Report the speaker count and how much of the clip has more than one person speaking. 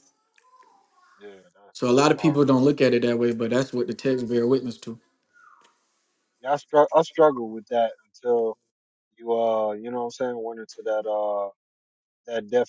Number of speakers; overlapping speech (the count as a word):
two, about 4%